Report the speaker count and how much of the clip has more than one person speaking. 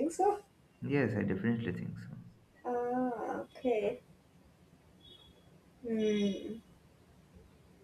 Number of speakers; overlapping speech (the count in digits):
2, no overlap